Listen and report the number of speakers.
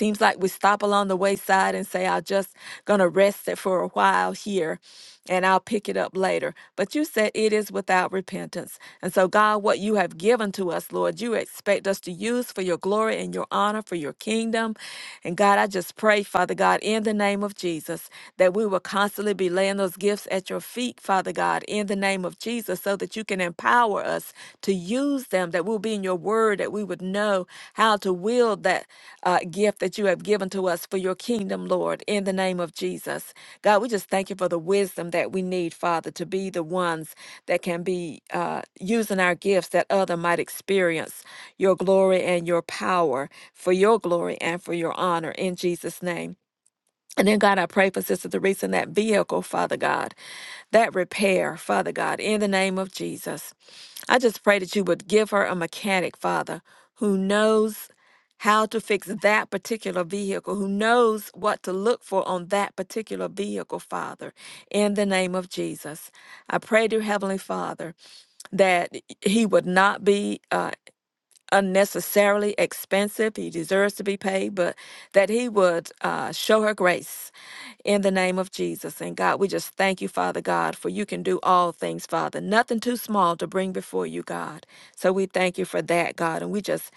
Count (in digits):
1